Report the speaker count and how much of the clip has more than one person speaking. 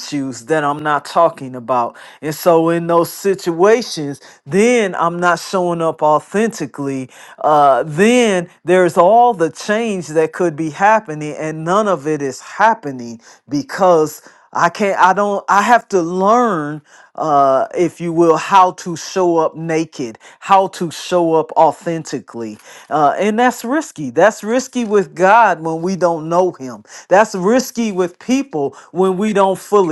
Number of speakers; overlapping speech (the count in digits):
1, no overlap